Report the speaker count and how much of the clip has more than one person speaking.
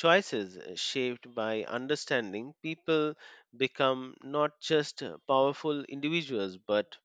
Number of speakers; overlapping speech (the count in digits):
1, no overlap